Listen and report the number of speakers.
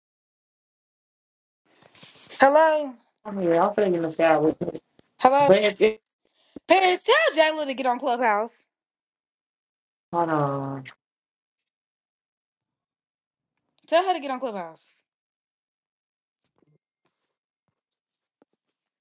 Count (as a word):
two